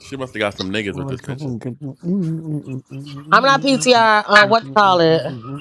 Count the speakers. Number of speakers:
three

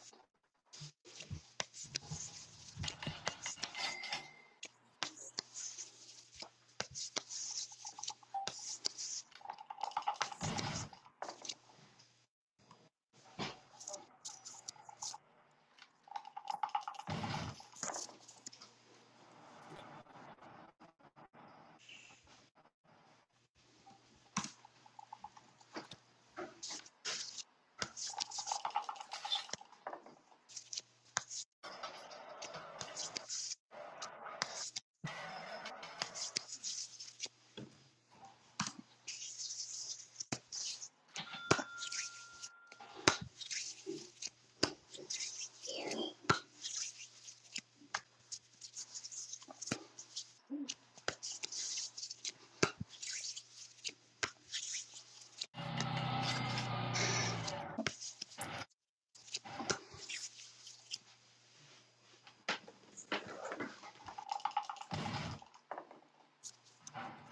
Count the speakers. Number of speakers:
zero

